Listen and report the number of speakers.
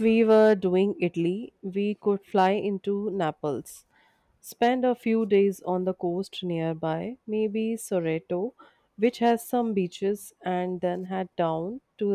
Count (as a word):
one